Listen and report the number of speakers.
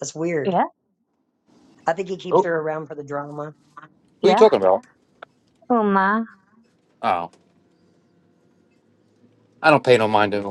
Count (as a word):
three